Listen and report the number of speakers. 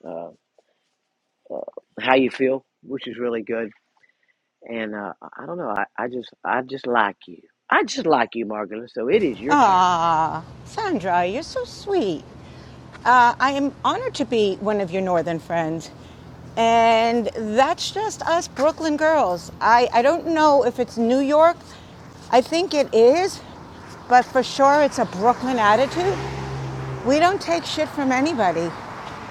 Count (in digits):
2